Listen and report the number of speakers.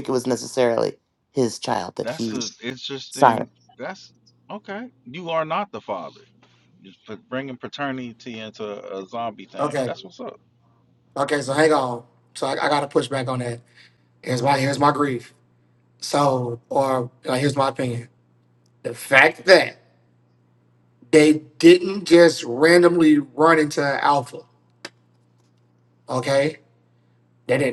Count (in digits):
3